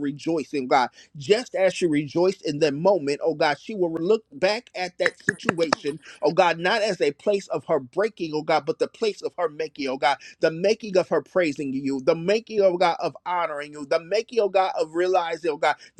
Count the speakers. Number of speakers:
one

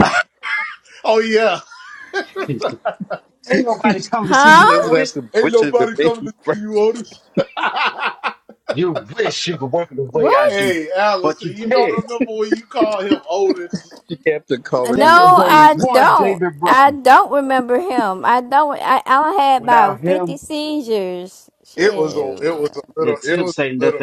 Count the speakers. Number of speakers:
four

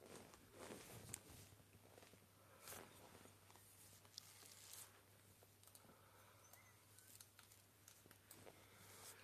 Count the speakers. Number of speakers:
zero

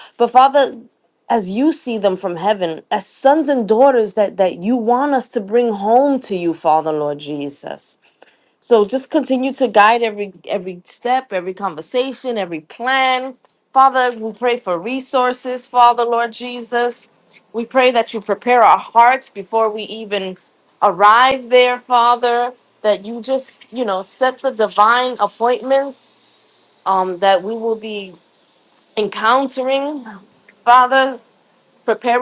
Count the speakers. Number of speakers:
one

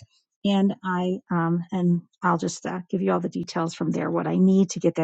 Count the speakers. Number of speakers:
one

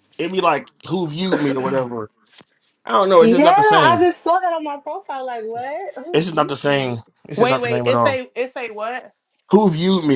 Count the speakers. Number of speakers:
three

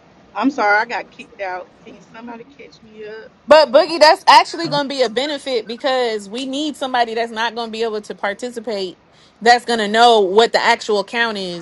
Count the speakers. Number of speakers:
two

